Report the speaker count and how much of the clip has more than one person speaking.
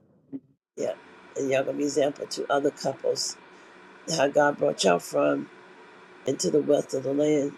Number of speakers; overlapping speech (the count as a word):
one, no overlap